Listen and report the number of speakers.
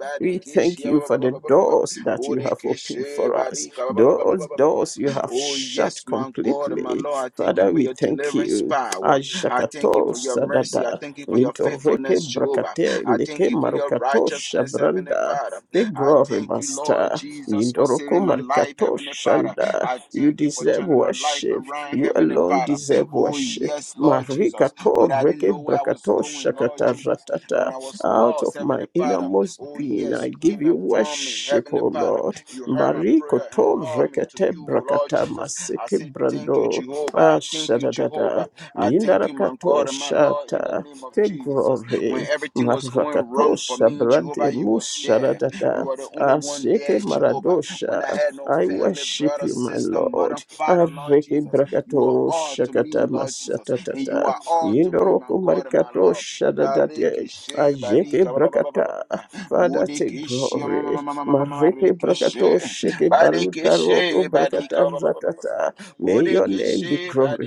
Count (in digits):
2